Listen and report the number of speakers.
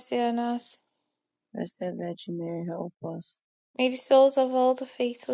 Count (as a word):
two